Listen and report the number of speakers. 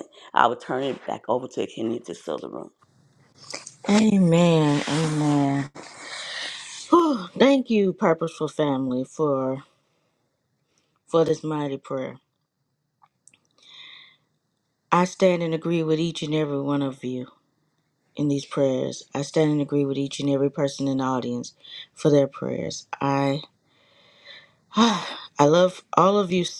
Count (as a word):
two